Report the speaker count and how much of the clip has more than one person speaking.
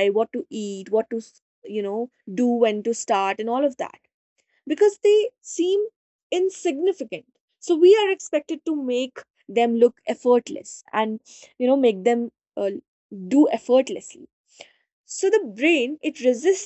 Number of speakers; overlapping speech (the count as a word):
one, no overlap